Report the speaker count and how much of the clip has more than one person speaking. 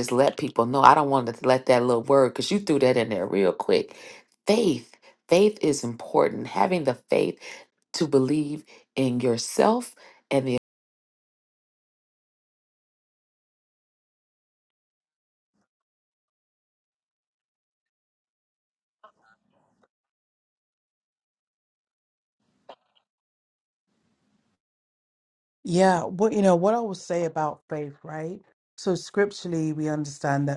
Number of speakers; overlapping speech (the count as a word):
two, no overlap